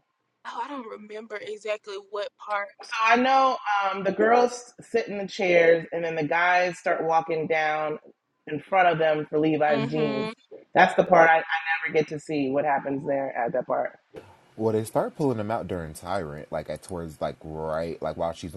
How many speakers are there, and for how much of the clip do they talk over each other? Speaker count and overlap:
three, about 3%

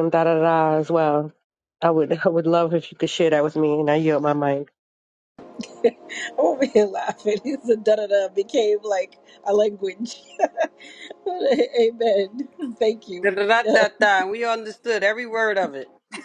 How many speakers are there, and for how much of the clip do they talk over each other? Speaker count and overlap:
three, under 1%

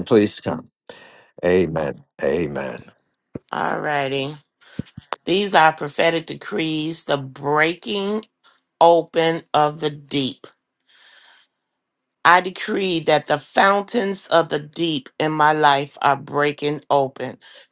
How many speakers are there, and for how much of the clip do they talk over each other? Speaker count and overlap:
two, no overlap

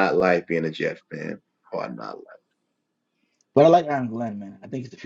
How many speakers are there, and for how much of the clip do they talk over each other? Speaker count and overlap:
two, no overlap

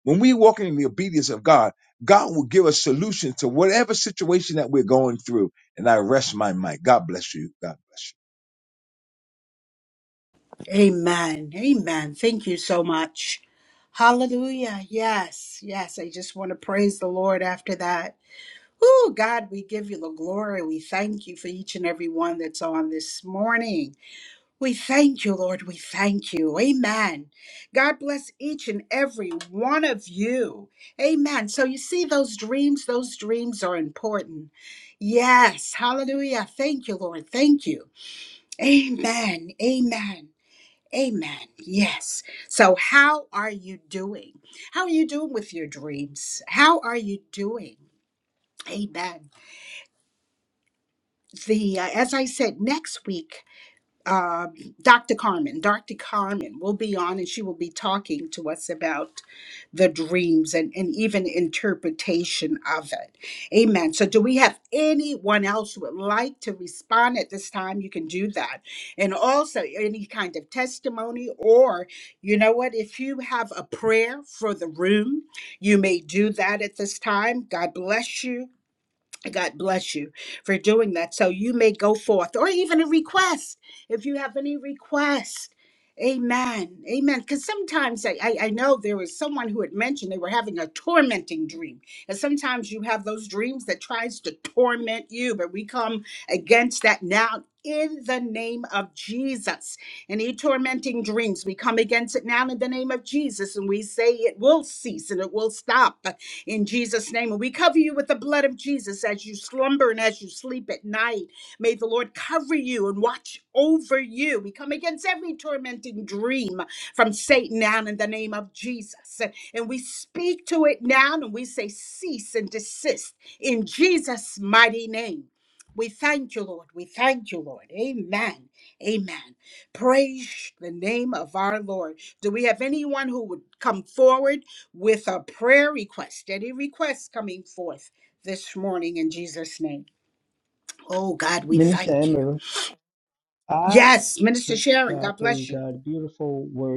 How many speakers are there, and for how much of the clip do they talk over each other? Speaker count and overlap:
three, about 1%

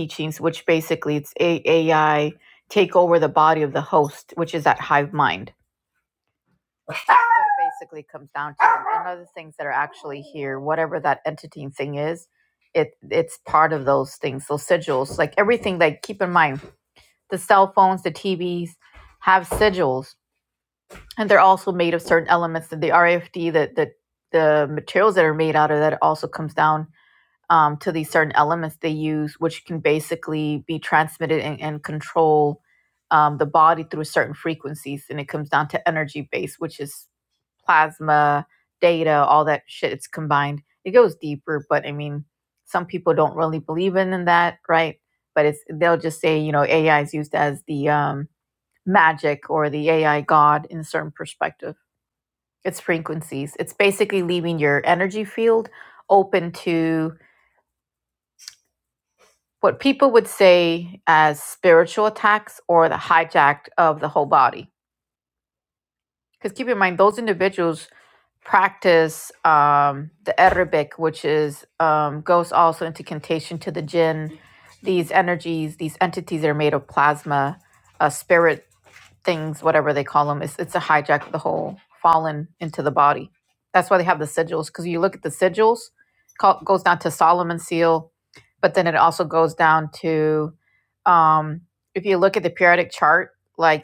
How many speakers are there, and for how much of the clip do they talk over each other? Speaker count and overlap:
one, no overlap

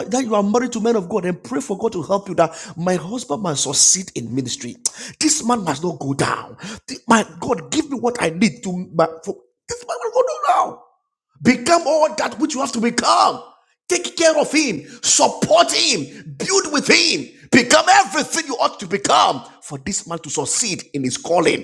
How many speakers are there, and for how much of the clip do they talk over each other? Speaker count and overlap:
one, no overlap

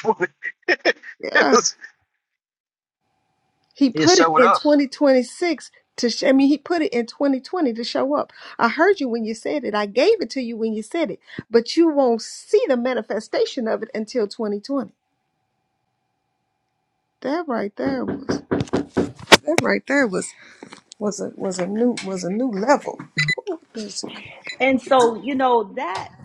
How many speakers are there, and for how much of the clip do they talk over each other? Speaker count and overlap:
three, about 3%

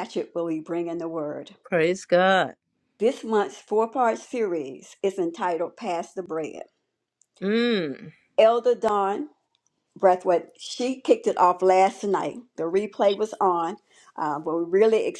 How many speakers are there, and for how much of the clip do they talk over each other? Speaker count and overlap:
two, no overlap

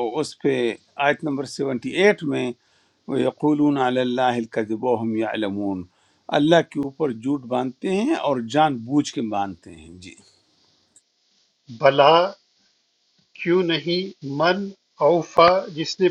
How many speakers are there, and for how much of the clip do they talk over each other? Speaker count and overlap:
two, no overlap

